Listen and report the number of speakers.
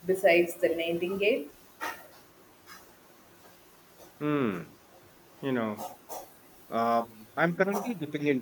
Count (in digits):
2